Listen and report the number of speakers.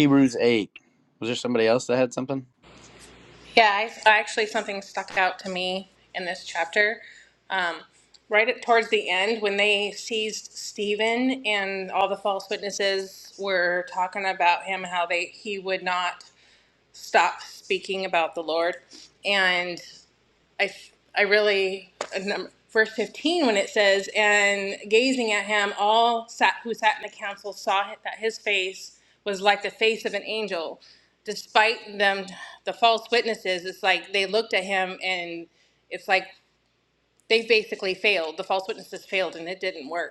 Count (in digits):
2